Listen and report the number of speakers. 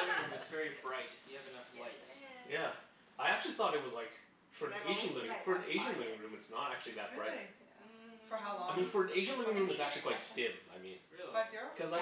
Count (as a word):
four